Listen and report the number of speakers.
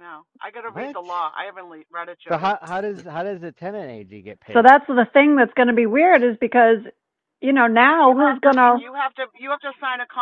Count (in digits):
3